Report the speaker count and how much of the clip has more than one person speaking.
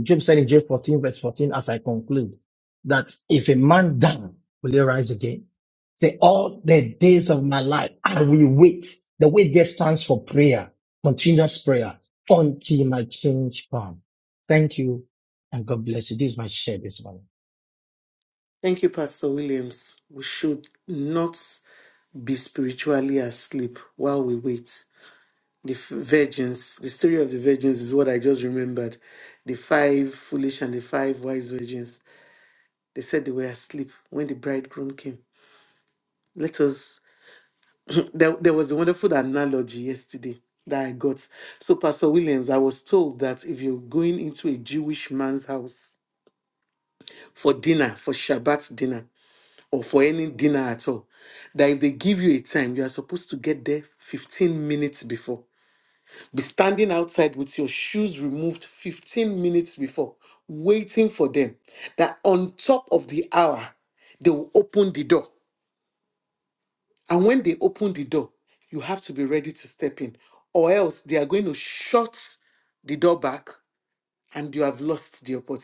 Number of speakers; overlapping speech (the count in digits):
2, no overlap